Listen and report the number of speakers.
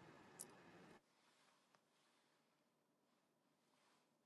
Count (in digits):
0